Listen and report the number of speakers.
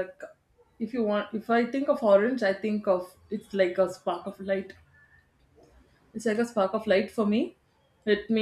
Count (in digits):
1